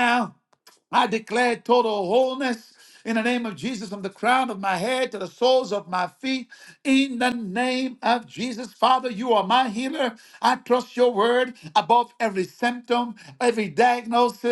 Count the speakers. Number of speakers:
one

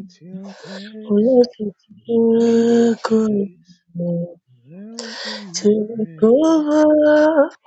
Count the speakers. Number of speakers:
two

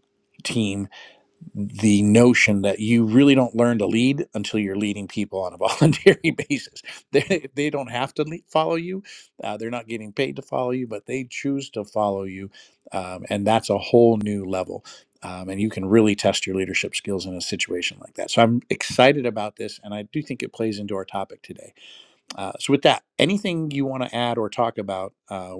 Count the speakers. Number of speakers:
one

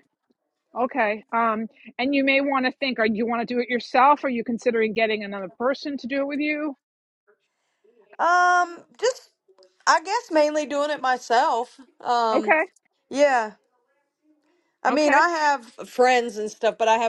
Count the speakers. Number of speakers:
two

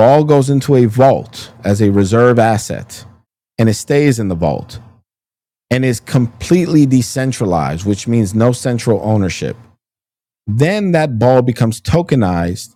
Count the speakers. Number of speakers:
one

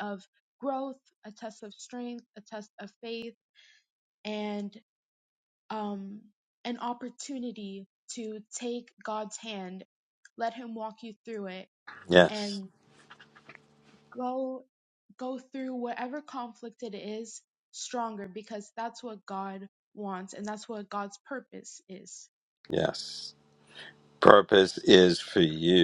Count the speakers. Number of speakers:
two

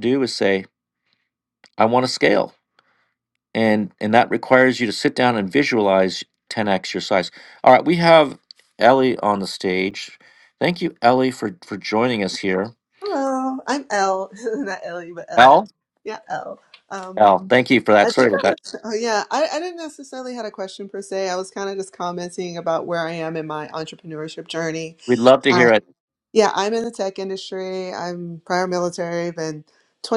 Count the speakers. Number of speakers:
two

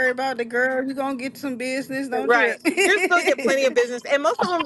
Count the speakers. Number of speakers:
two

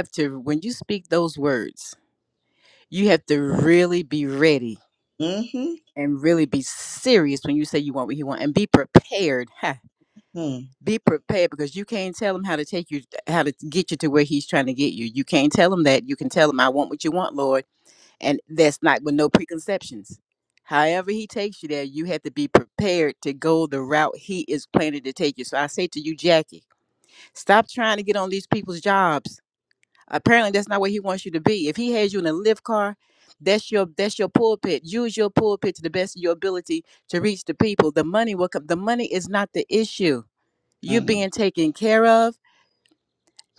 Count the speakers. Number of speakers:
two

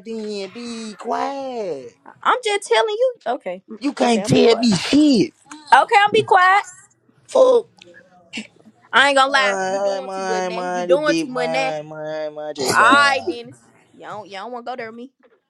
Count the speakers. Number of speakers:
two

